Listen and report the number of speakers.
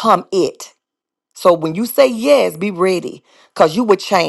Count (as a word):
one